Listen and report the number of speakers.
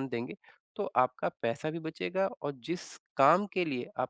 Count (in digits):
1